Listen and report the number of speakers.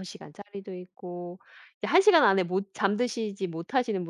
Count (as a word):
one